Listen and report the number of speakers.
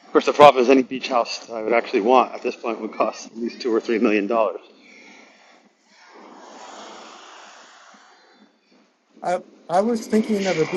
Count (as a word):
two